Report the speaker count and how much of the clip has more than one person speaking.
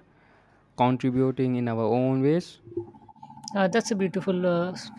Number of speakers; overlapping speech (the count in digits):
2, no overlap